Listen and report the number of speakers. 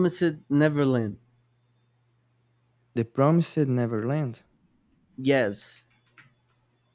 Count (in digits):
2